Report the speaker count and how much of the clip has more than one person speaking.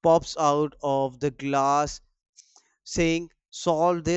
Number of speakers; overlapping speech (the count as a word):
one, no overlap